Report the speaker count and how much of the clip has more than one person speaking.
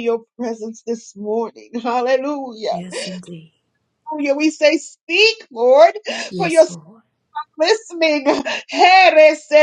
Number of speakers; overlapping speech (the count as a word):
two, about 4%